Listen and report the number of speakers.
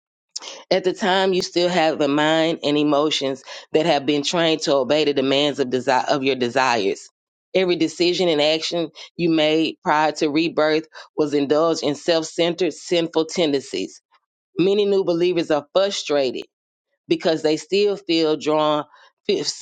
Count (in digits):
1